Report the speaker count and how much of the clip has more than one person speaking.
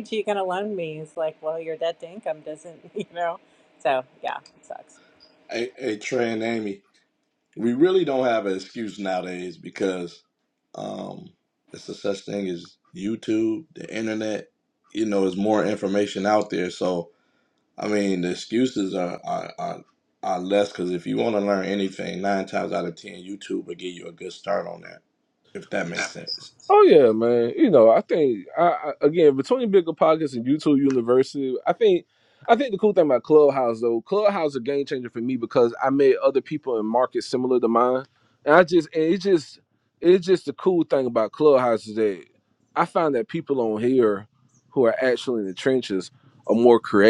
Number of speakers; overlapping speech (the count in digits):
3, no overlap